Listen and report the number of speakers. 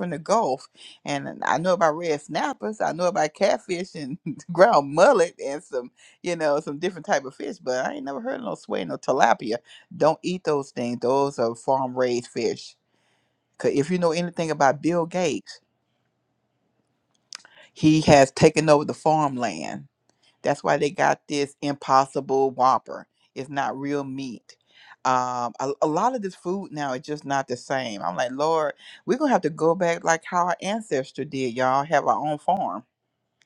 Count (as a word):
one